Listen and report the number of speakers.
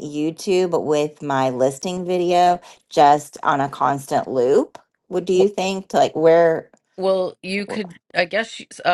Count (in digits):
2